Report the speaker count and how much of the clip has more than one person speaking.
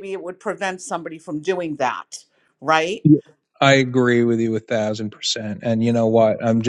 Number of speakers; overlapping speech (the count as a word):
two, no overlap